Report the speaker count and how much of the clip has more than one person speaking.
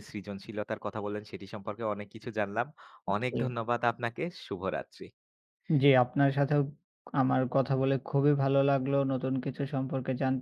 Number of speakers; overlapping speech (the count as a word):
two, about 2%